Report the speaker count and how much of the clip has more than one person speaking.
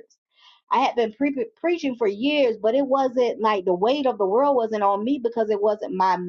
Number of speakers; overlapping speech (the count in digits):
1, no overlap